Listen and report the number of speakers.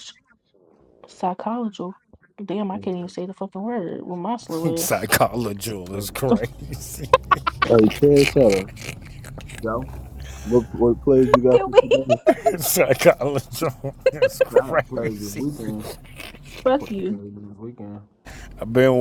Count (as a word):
four